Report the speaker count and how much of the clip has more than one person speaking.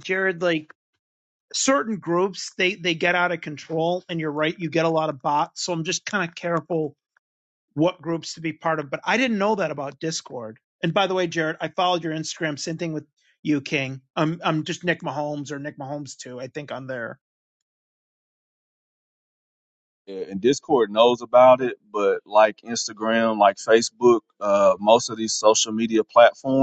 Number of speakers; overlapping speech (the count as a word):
two, no overlap